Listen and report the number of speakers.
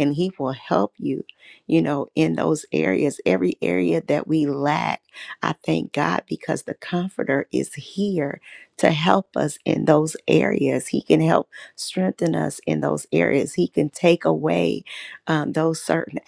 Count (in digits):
1